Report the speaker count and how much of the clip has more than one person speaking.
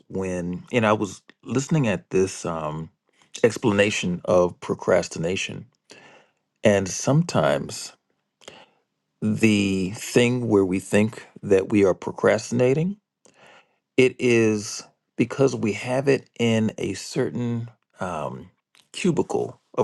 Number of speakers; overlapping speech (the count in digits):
1, no overlap